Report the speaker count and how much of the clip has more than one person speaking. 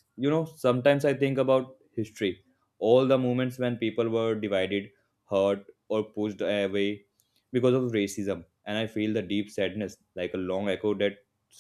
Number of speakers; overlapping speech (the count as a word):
one, no overlap